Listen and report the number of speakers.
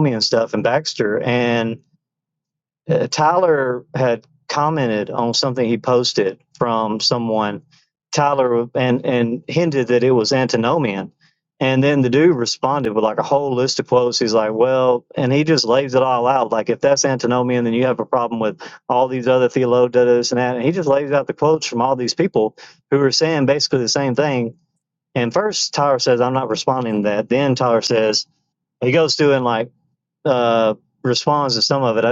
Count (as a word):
one